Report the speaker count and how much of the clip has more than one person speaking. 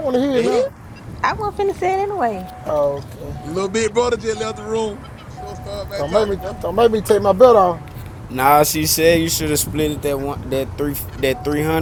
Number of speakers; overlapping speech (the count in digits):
4, about 9%